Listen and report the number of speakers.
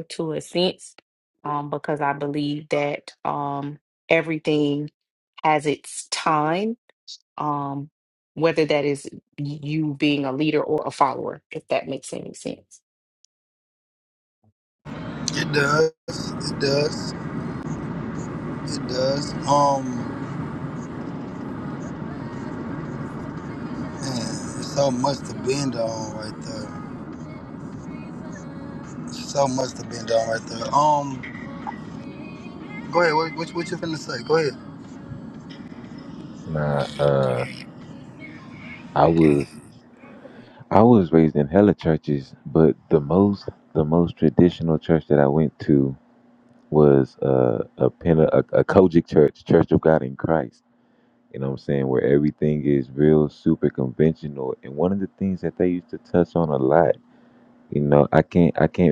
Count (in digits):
3